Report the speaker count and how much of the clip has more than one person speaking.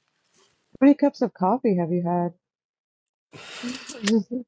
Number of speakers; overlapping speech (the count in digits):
1, no overlap